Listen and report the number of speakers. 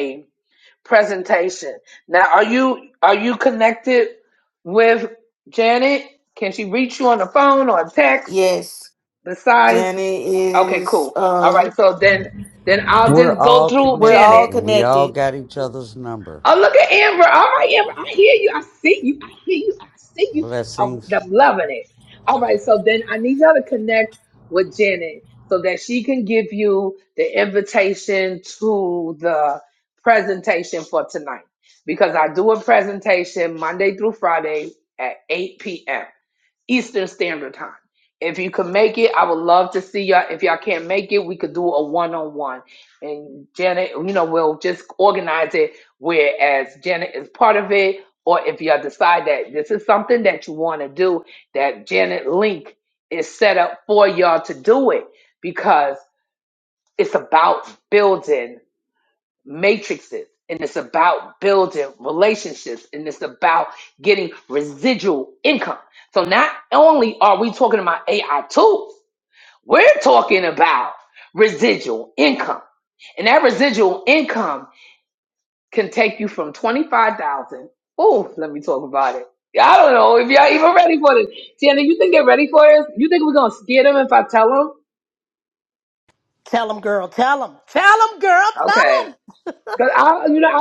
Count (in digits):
4